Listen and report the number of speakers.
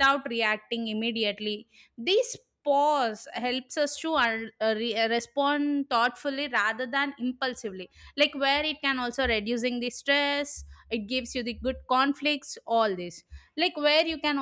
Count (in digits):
1